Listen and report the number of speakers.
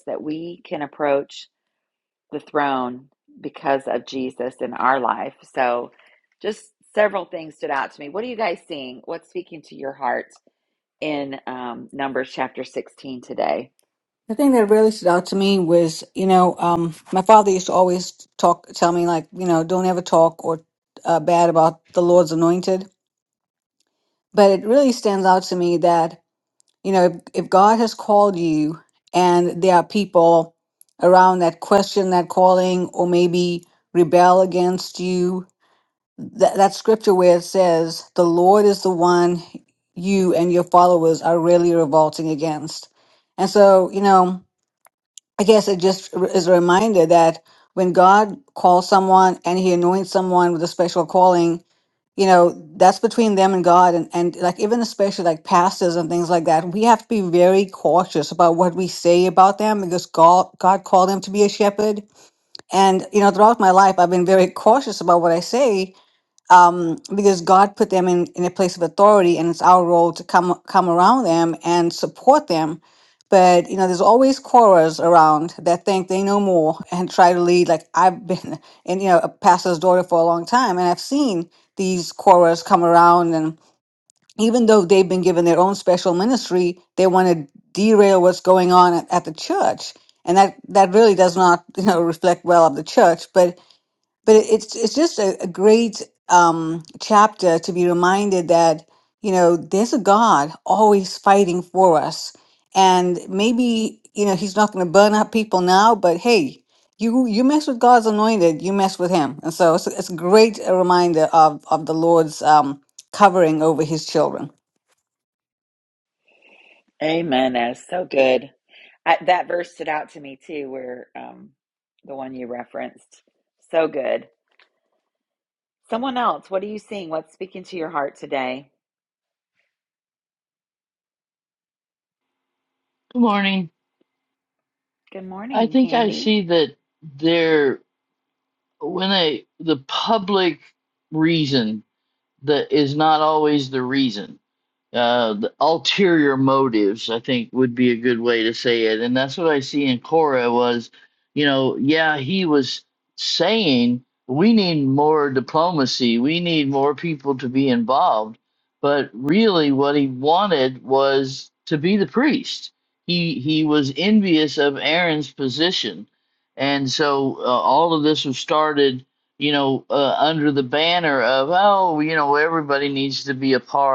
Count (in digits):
3